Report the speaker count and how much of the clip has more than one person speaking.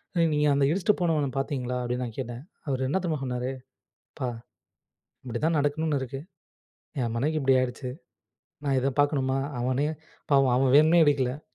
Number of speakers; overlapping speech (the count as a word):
one, no overlap